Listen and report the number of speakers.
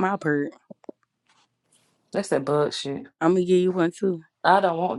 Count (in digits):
2